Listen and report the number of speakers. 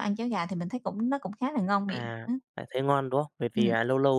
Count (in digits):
2